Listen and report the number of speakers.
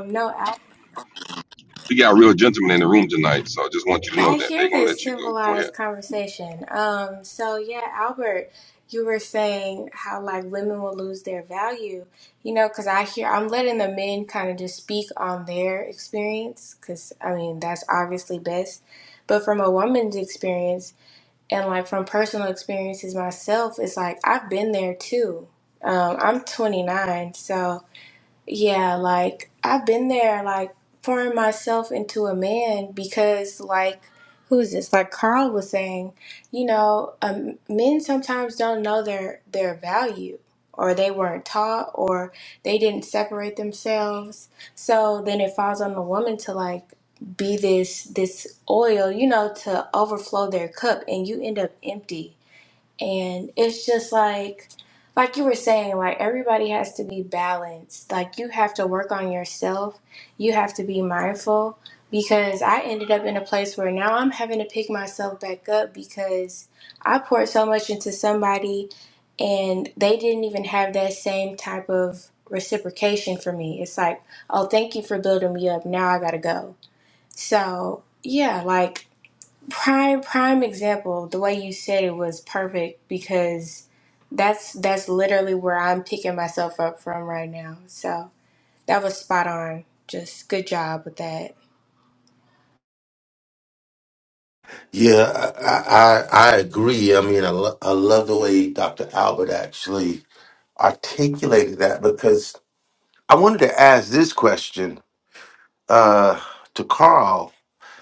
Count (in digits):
3